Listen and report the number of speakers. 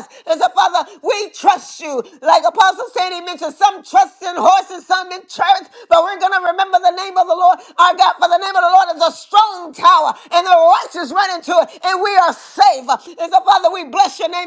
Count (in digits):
1